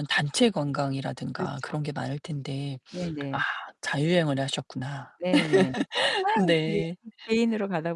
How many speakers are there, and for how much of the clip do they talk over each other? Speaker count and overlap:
two, about 9%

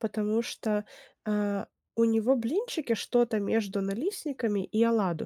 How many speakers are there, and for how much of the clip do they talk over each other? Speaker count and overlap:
one, no overlap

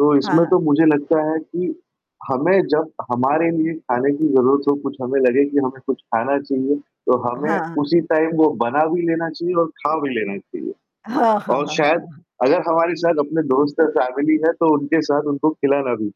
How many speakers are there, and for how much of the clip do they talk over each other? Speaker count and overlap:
two, about 8%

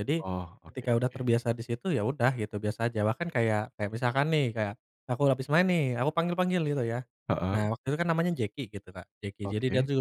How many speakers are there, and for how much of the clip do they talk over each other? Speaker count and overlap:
two, about 10%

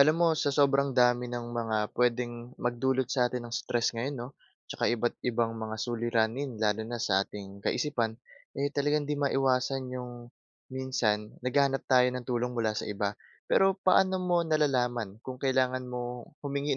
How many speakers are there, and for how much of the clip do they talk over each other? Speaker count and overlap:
one, no overlap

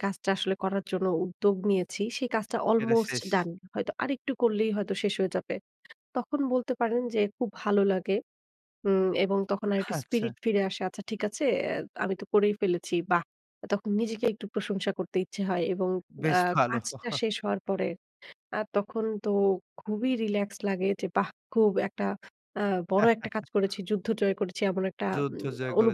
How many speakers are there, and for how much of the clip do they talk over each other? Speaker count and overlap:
two, about 7%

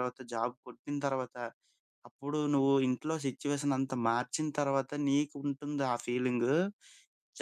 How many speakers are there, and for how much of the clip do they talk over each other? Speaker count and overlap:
one, no overlap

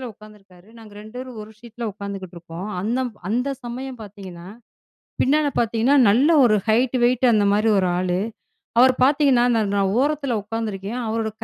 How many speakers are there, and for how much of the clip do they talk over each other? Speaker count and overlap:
one, no overlap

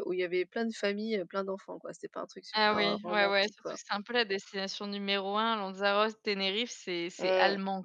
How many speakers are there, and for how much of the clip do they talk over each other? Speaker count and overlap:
two, about 16%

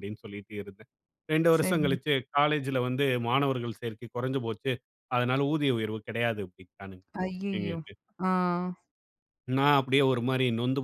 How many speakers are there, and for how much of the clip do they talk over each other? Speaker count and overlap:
two, about 4%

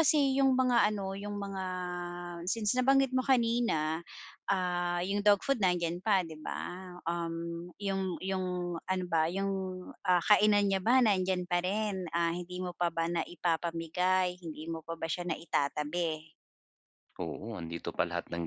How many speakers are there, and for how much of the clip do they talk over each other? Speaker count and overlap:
two, no overlap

